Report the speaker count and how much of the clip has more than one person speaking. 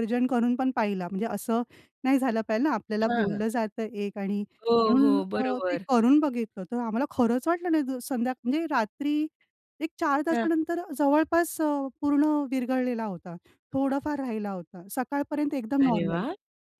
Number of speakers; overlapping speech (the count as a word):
two, about 12%